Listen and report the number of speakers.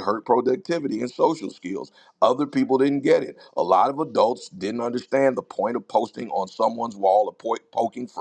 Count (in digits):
1